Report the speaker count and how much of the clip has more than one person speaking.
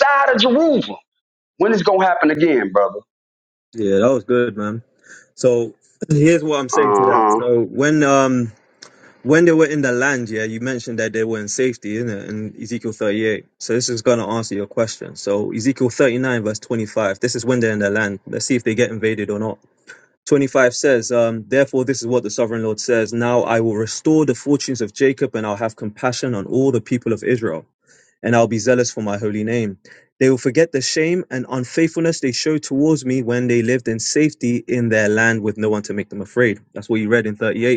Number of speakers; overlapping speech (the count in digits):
2, about 2%